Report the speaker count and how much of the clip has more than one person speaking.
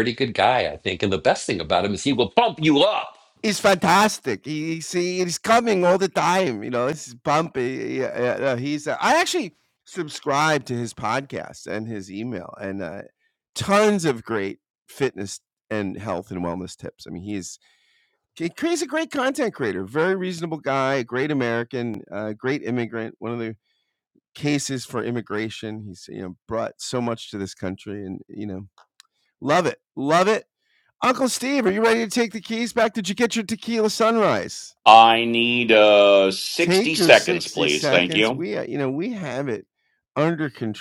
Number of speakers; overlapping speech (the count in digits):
3, about 4%